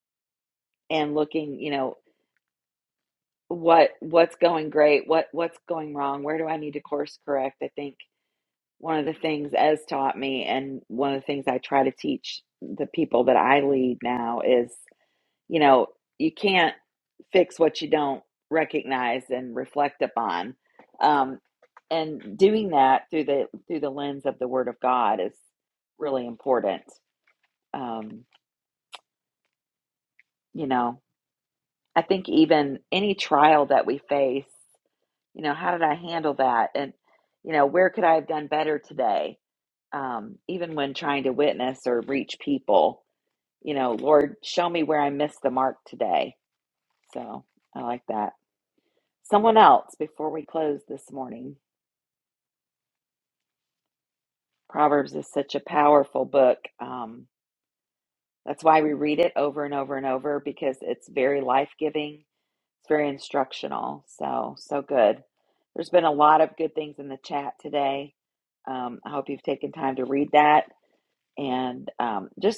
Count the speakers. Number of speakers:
1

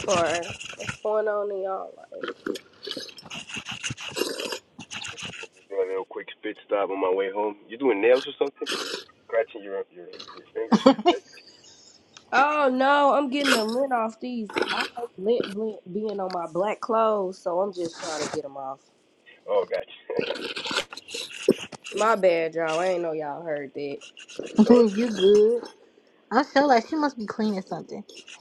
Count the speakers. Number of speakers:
3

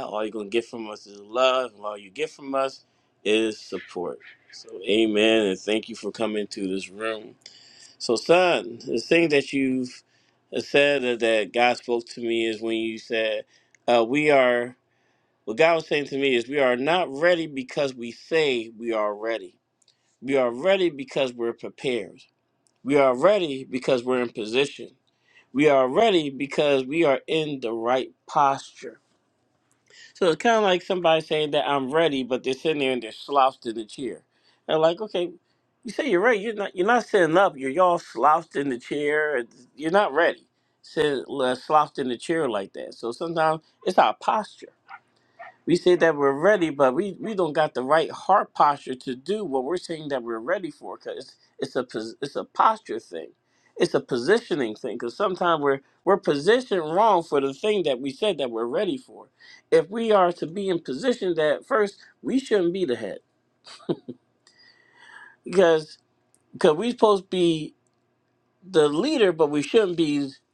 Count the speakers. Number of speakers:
1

